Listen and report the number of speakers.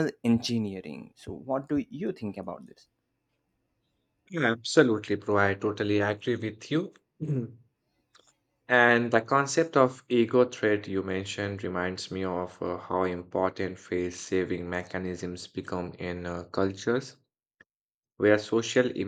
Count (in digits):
2